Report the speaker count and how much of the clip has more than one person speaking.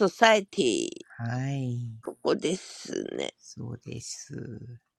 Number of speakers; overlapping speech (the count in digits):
2, no overlap